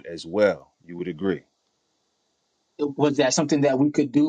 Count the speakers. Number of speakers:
2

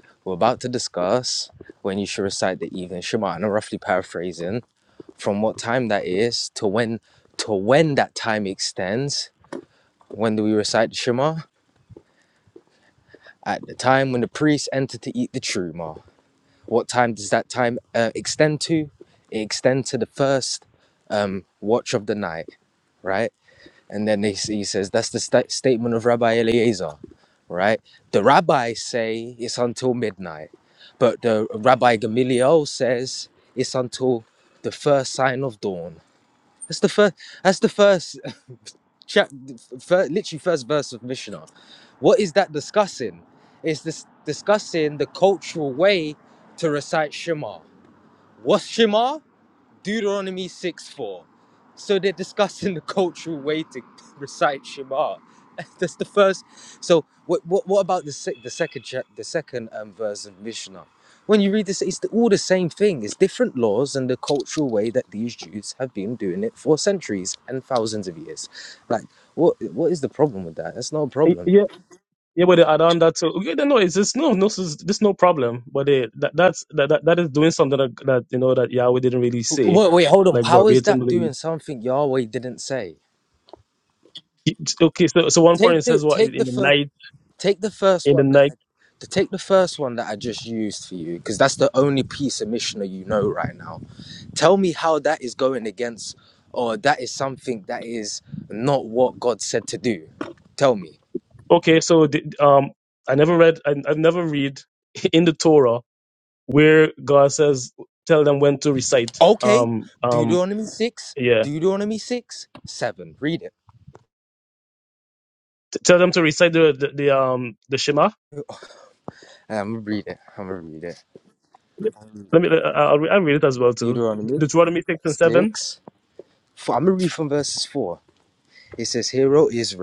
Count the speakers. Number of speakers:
2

